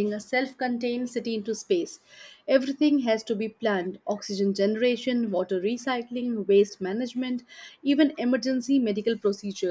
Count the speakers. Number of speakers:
one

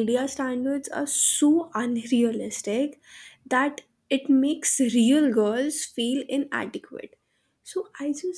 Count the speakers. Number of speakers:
one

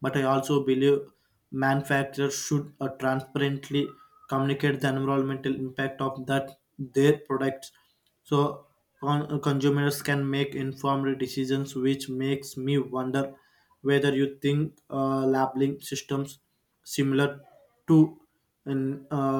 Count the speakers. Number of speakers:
one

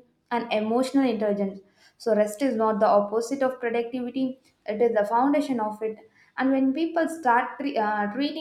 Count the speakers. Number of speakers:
one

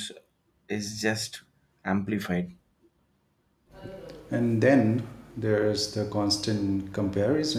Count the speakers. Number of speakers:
two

